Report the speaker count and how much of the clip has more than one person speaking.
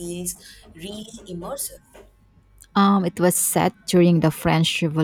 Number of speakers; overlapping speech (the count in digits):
2, no overlap